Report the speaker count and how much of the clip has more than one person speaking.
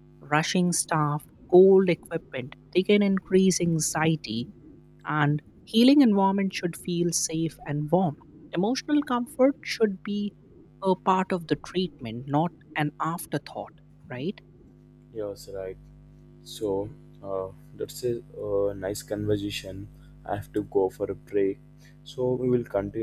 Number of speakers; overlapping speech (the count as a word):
two, no overlap